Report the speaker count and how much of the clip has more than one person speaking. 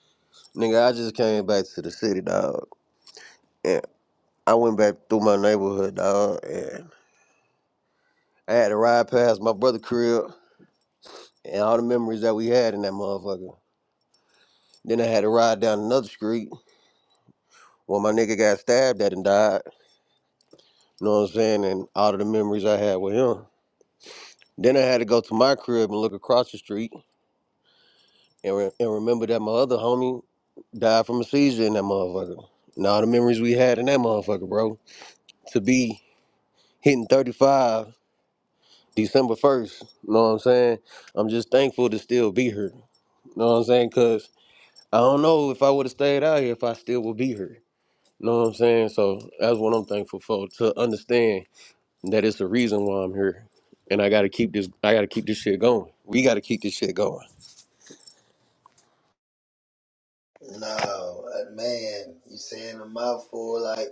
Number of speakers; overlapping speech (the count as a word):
two, no overlap